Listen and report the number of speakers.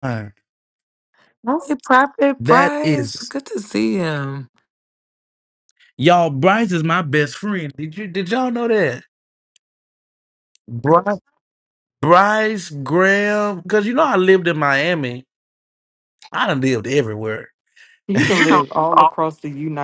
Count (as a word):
three